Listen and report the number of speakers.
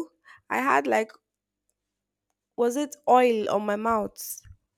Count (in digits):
1